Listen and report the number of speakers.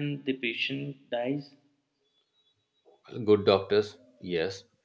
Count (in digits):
2